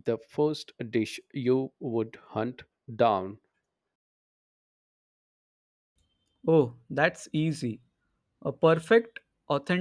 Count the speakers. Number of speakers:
two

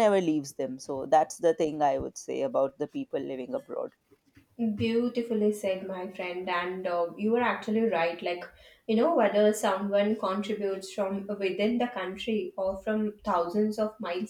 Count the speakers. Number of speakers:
two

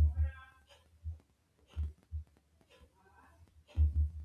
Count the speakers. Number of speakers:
zero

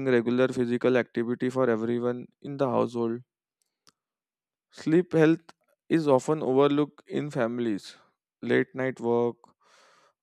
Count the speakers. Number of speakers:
one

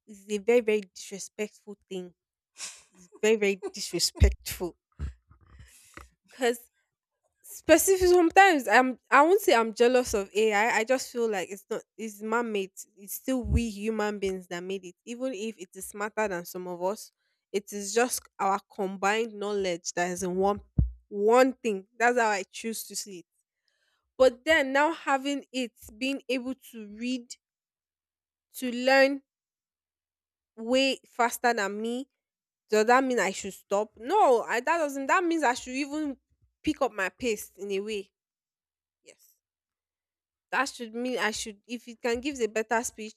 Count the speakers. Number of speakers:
one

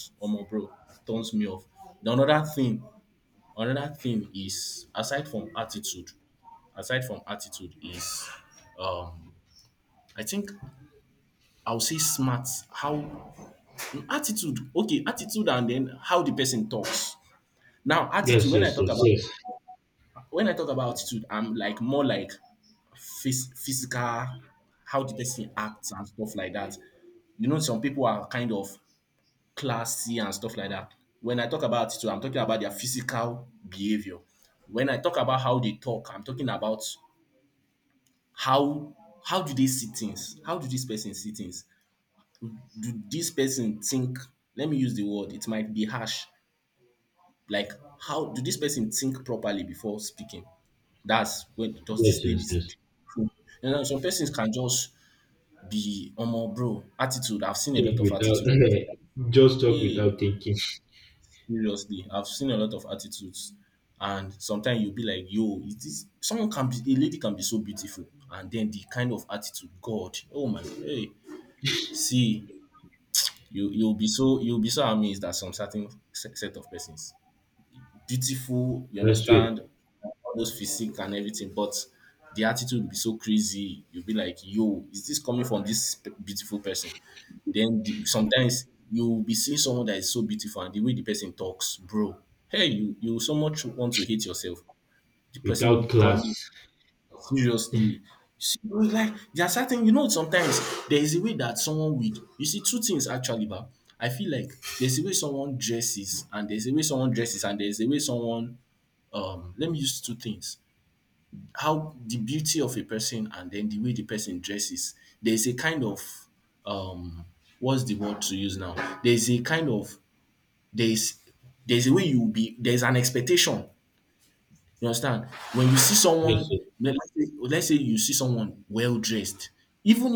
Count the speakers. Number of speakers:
two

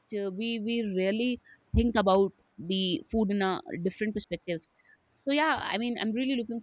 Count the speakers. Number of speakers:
one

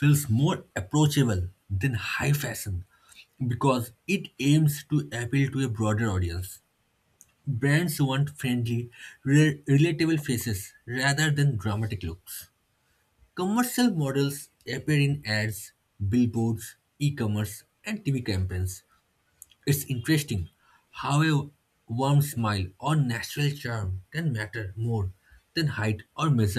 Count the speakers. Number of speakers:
one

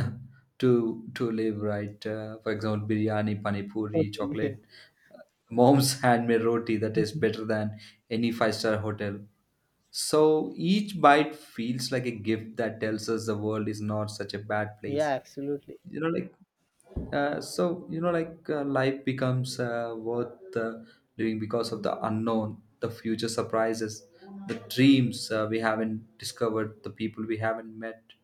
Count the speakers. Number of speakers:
two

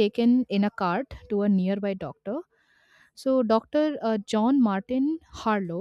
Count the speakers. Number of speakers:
one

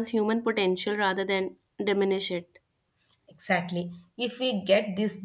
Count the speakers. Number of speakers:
two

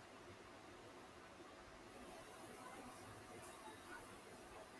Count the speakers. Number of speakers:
zero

